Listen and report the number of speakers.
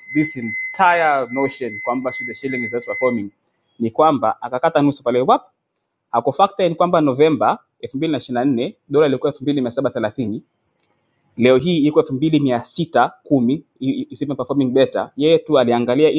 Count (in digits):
1